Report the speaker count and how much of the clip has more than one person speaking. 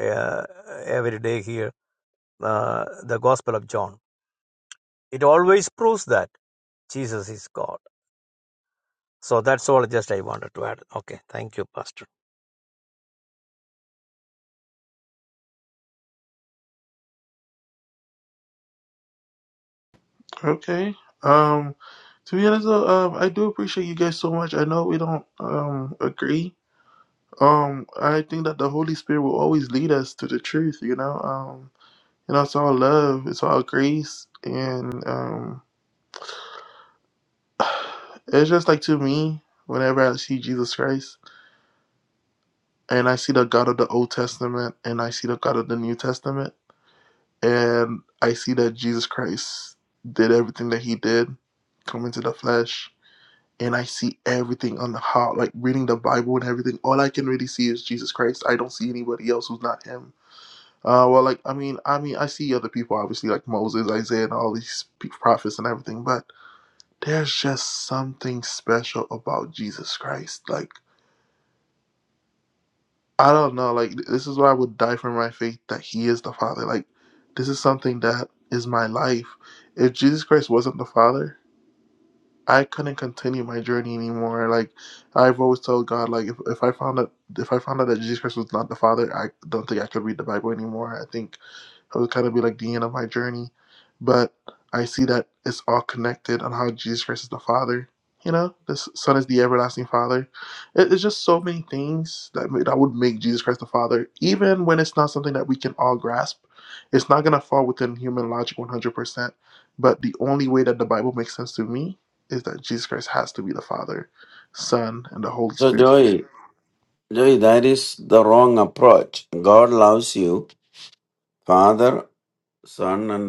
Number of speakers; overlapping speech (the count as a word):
three, under 1%